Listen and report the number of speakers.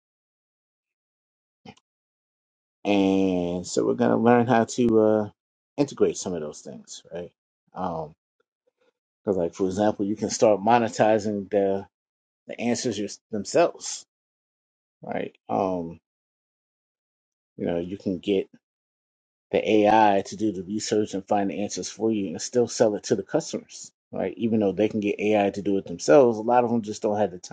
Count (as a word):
one